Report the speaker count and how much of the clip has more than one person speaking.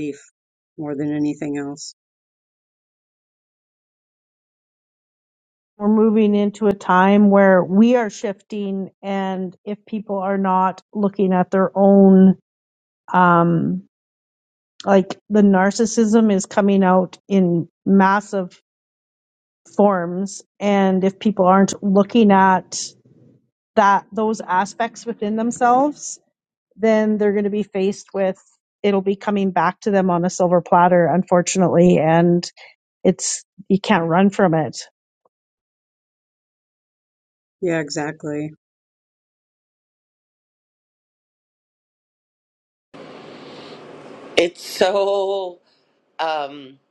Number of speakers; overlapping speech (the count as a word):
three, no overlap